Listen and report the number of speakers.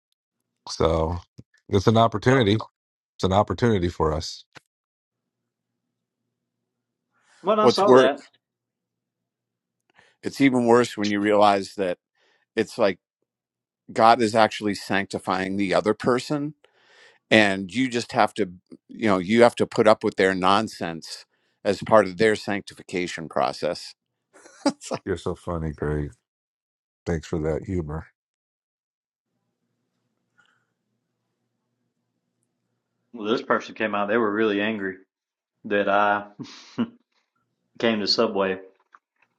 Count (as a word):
three